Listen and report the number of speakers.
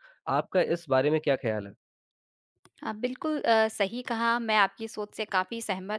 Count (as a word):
two